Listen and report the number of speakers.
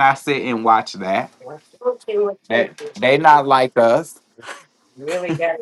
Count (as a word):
two